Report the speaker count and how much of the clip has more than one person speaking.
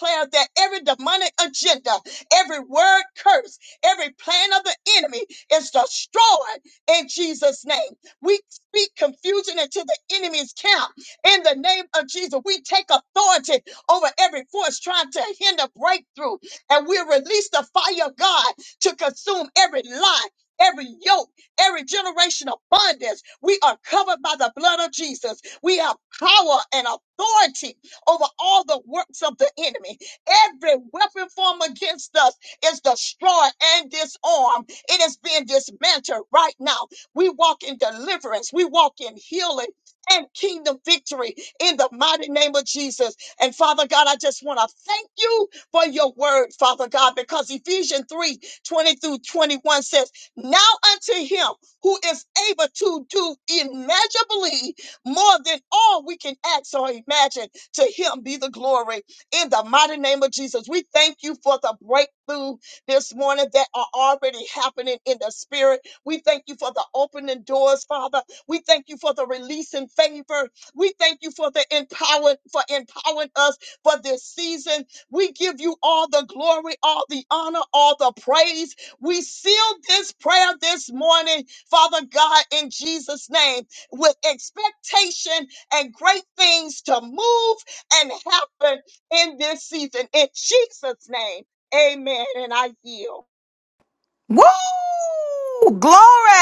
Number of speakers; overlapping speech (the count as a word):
two, no overlap